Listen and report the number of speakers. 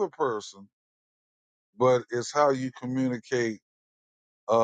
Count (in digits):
1